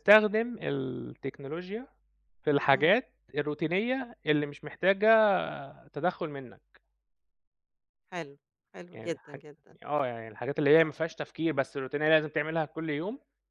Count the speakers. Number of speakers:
two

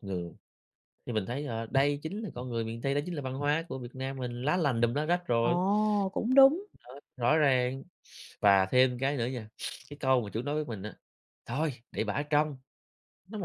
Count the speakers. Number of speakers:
two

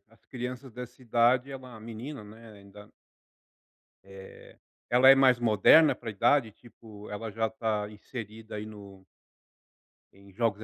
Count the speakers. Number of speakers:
one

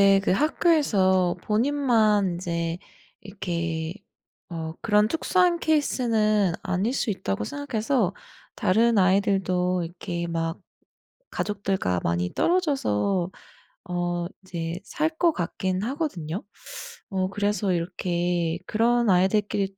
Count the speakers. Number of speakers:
one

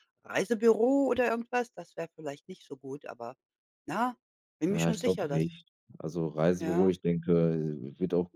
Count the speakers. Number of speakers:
two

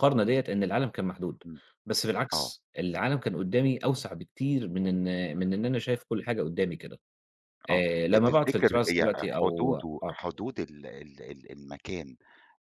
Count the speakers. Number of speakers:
two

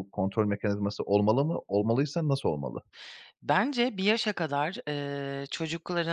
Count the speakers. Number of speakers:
two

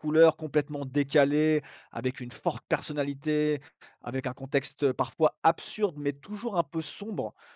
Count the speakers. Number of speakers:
one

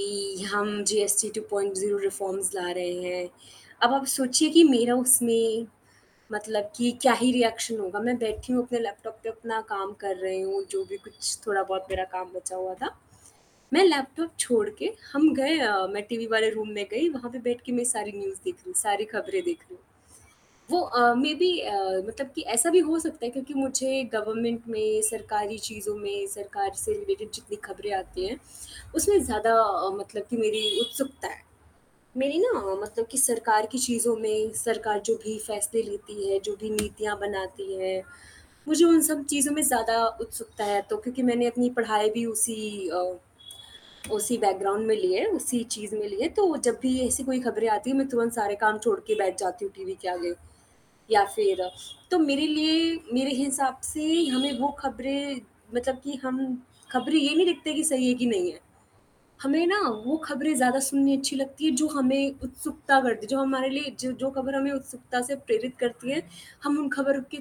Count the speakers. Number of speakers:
one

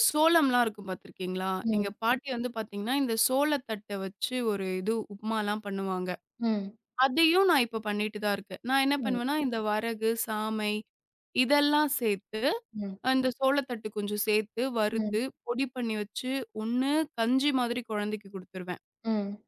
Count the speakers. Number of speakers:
two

